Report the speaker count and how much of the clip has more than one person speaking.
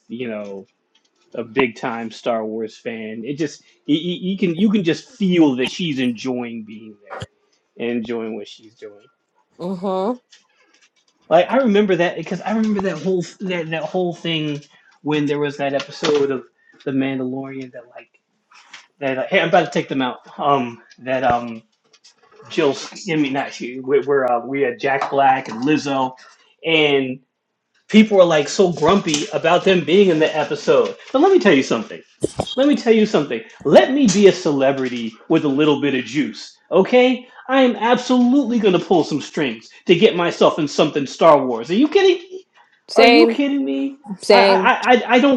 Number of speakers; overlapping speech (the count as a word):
two, about 2%